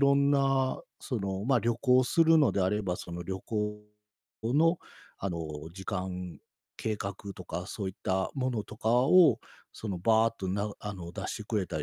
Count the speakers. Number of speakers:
1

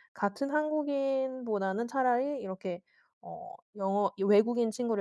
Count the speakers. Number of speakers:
1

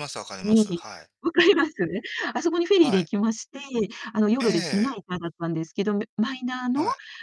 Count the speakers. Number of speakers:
2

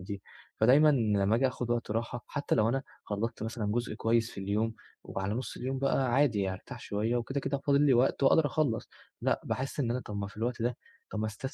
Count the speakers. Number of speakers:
1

